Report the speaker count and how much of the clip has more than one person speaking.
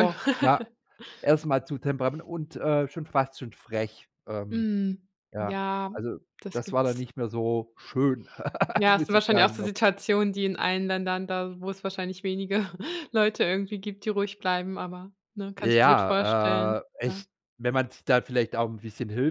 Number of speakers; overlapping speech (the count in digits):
2, about 16%